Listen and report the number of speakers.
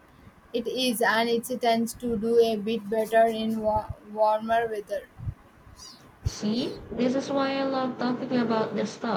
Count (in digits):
2